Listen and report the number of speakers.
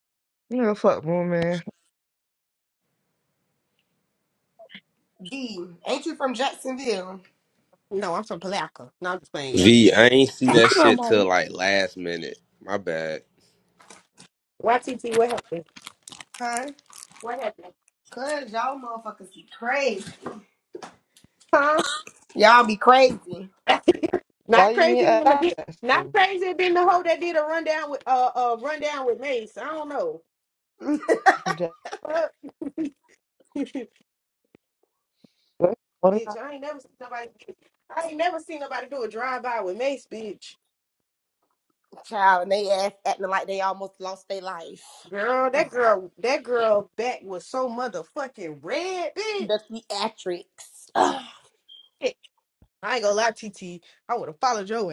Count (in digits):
4